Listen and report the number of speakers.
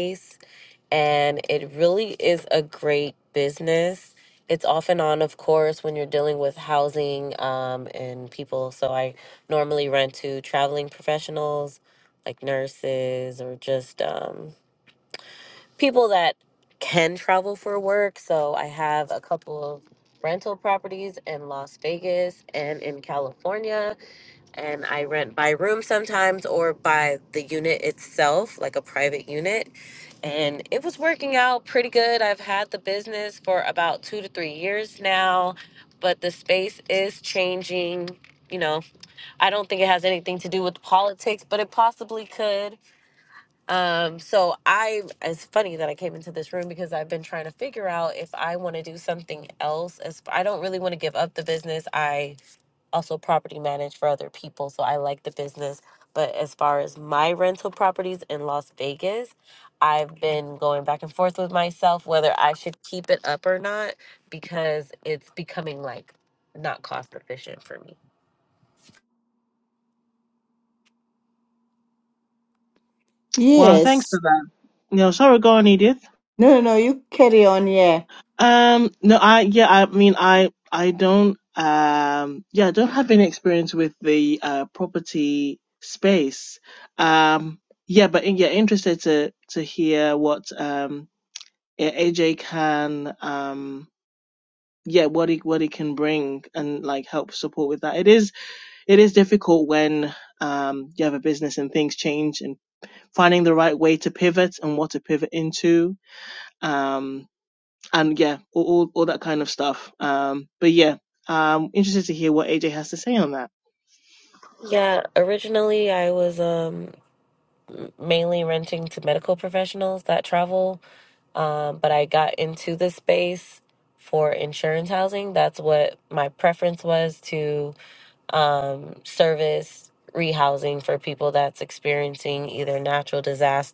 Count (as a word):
three